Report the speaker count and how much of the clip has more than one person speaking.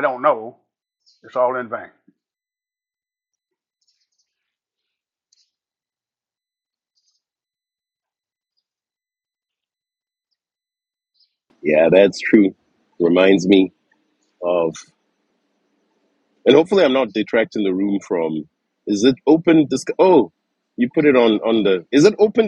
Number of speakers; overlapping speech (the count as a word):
two, no overlap